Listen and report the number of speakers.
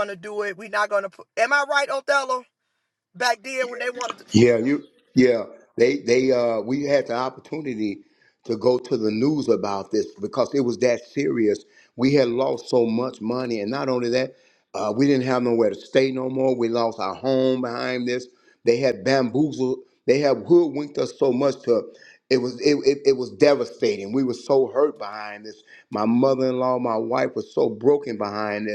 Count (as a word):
two